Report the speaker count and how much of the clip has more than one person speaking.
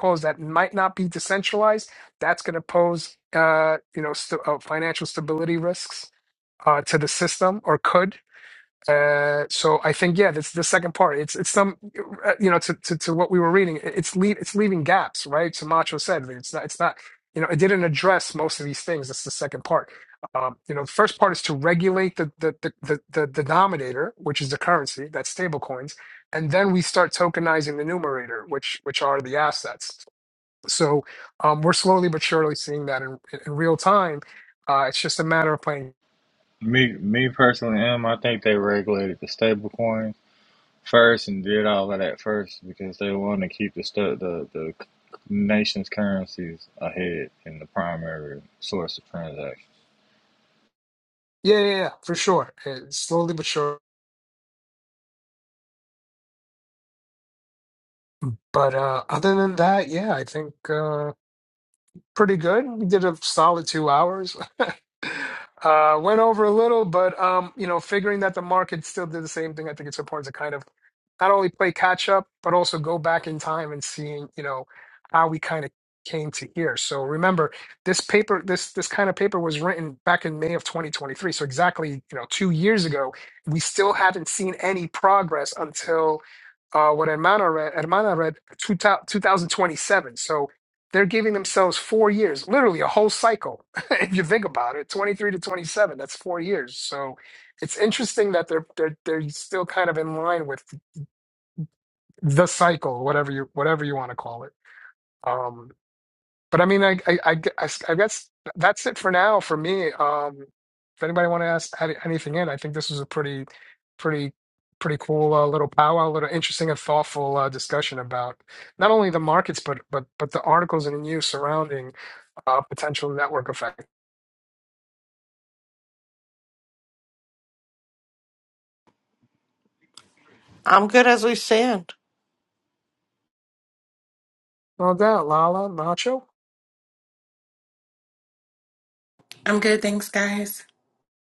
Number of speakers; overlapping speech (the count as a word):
four, no overlap